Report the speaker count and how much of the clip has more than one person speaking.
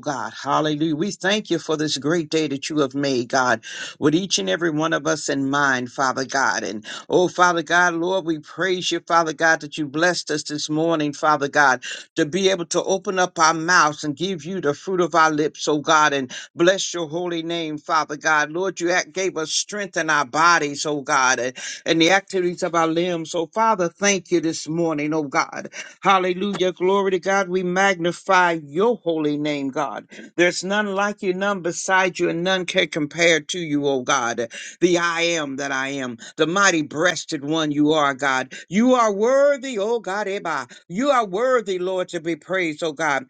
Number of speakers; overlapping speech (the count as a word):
one, no overlap